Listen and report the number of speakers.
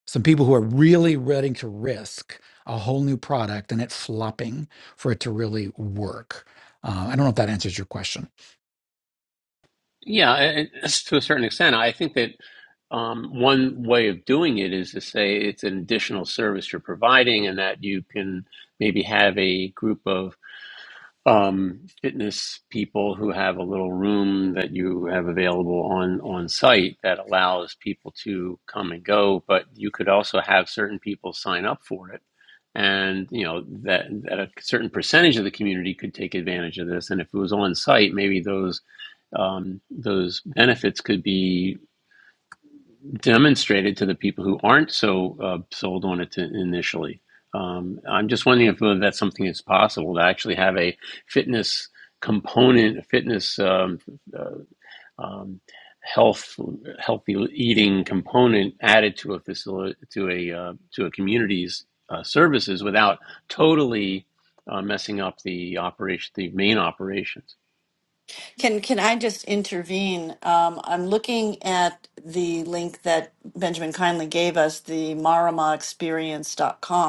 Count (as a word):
three